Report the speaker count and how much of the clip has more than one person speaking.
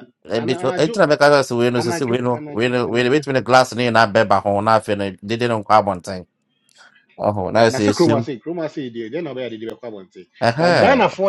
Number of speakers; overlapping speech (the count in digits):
2, about 28%